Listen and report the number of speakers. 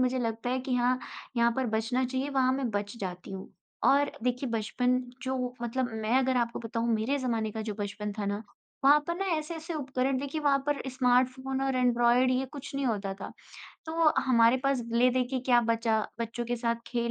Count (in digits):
1